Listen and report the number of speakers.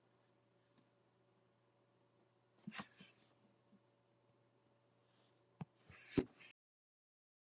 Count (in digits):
0